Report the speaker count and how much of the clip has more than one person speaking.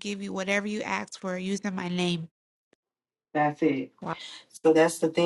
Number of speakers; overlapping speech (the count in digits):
2, no overlap